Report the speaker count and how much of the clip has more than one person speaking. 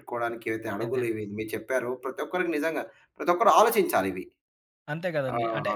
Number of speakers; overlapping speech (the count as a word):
two, about 12%